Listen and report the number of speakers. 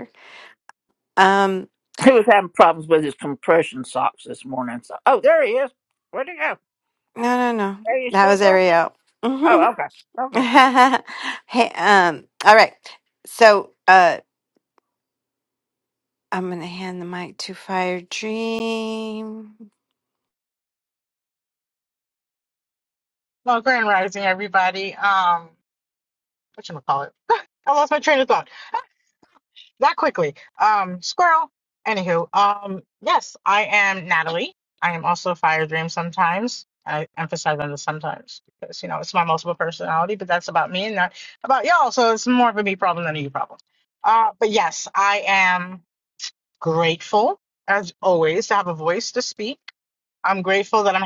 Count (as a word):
three